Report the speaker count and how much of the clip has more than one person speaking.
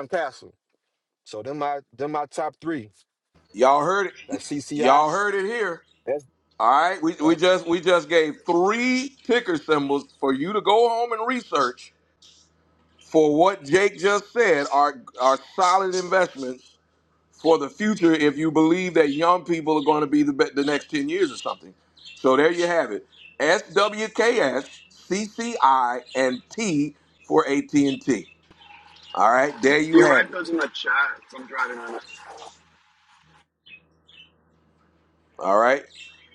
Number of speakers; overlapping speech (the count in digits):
3, about 3%